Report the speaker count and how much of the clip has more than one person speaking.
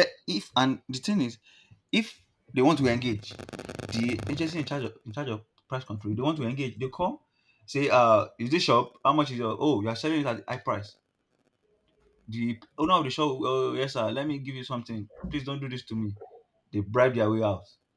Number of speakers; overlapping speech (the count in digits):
1, no overlap